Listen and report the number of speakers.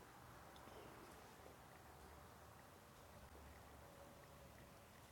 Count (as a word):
zero